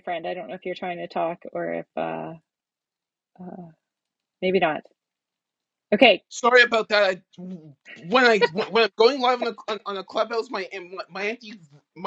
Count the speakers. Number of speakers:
2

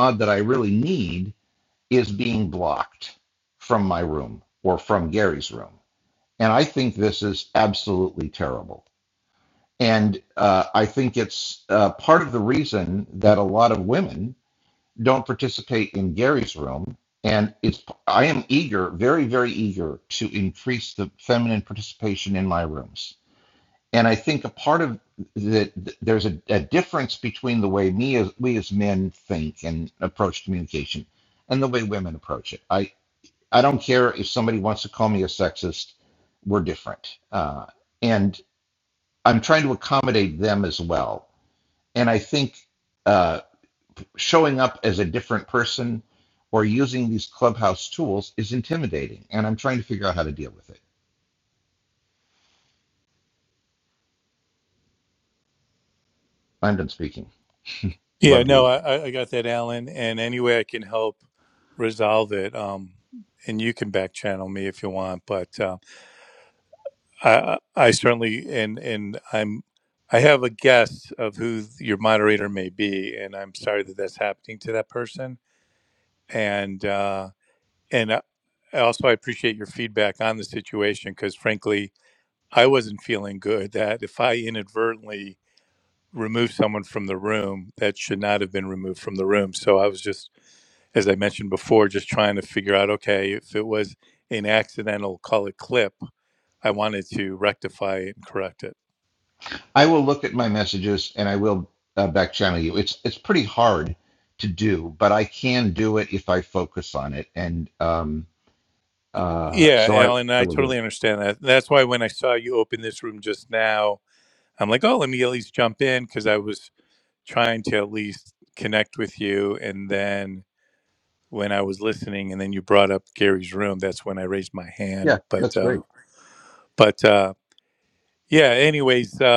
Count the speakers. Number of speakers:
2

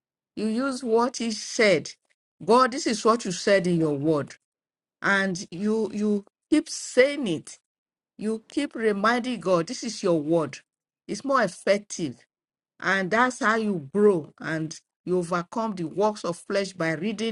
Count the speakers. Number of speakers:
1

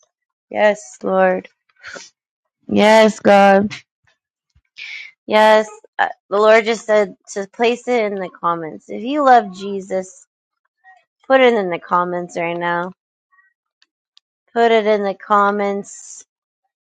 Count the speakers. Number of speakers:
1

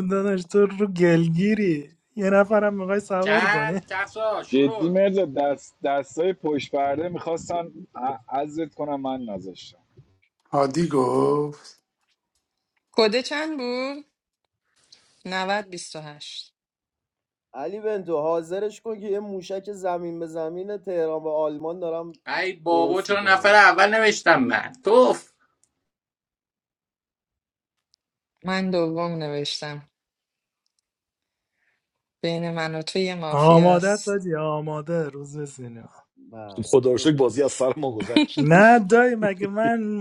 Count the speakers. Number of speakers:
7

